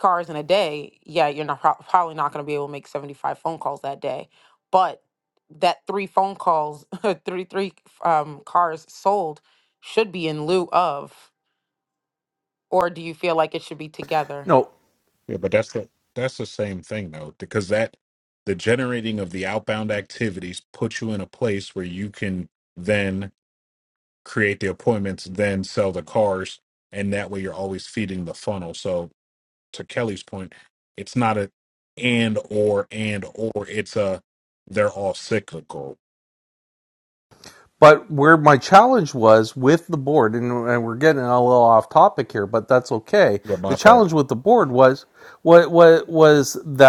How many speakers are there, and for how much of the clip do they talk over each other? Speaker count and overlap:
three, about 1%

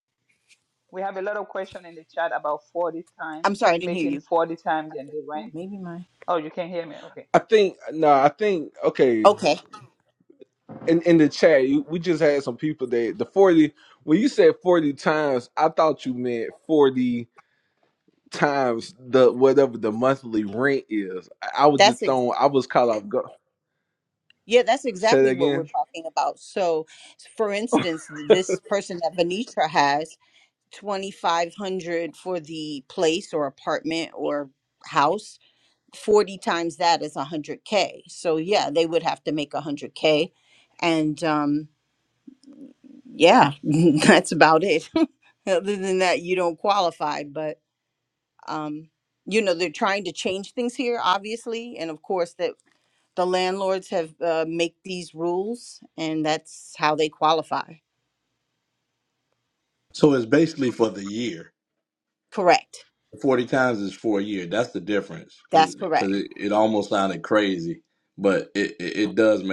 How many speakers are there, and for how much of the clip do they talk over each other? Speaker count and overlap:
four, about 4%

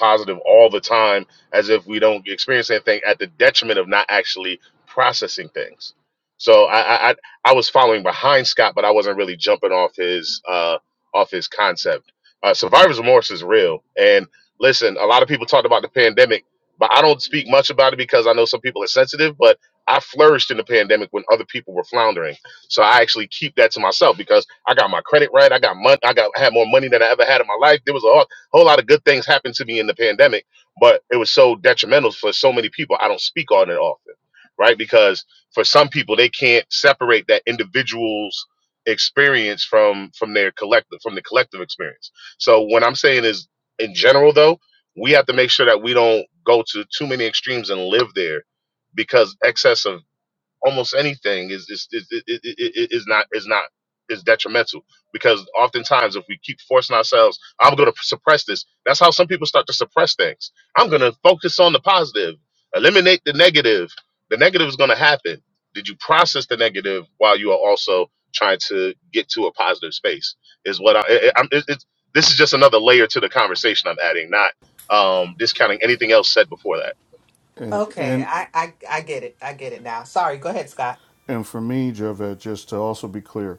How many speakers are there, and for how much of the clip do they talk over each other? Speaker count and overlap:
three, about 1%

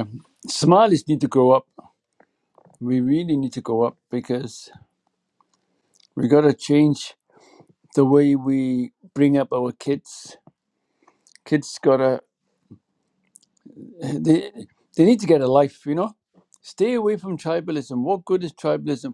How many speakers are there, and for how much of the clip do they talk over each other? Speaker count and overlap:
one, no overlap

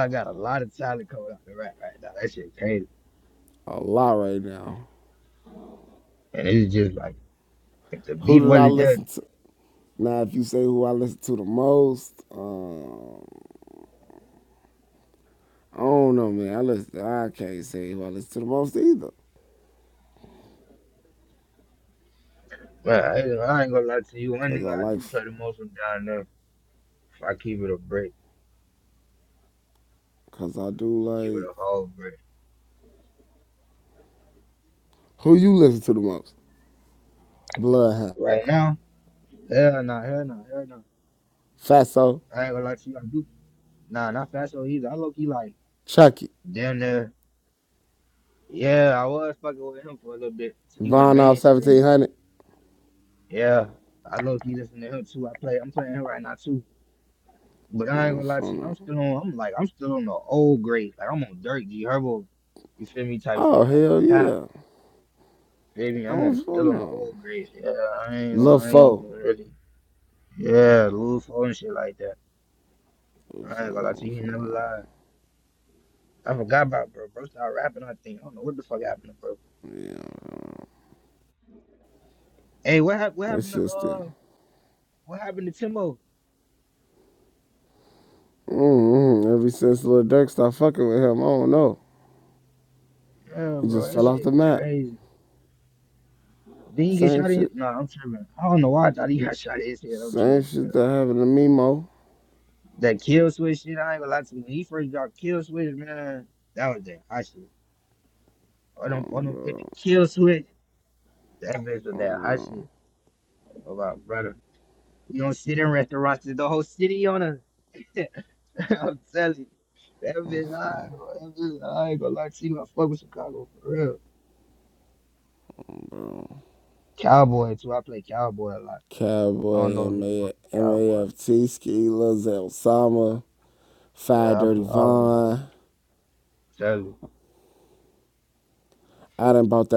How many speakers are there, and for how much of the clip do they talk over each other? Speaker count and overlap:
two, about 9%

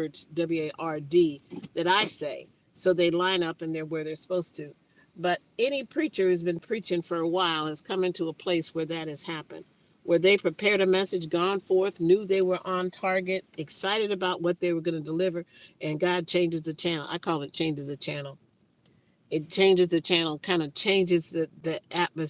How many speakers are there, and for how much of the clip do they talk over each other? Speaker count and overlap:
one, no overlap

